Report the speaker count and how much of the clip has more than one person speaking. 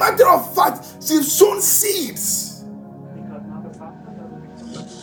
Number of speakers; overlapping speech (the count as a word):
one, no overlap